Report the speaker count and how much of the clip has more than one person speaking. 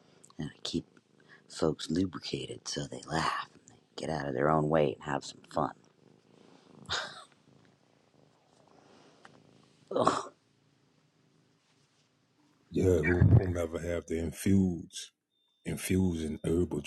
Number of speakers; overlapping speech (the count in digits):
2, no overlap